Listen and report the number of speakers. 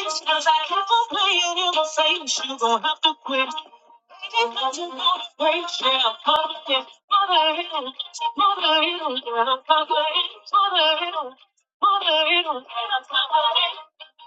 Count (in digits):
1